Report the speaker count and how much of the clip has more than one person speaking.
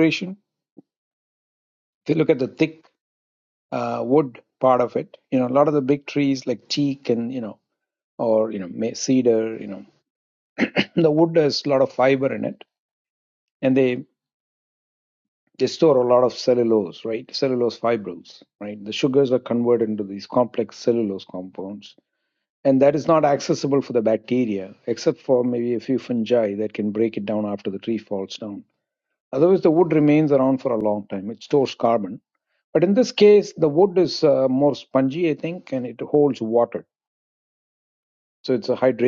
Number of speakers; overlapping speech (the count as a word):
one, no overlap